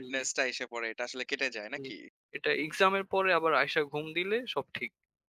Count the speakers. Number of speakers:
two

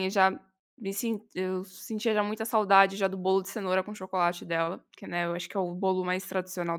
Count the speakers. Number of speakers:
one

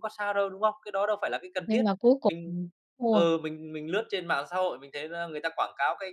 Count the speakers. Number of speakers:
two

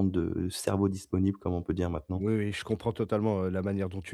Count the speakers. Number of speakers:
two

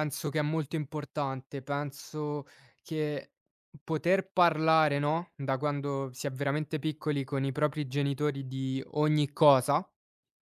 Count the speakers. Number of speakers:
one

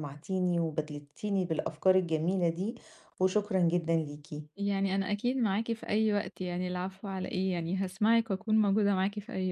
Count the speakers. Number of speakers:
two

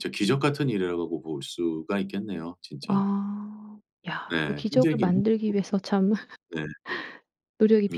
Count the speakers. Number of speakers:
two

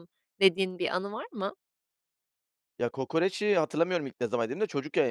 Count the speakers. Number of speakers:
two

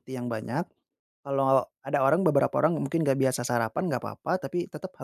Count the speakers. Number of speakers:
one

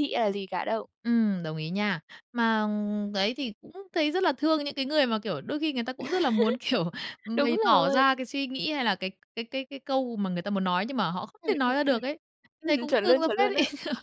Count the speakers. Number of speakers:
two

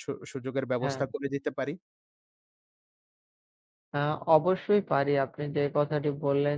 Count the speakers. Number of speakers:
two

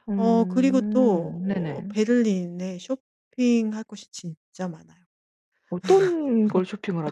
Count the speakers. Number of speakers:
two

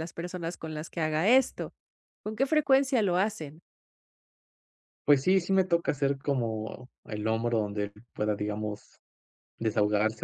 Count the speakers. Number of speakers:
two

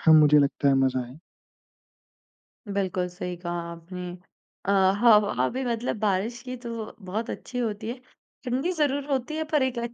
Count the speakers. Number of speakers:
two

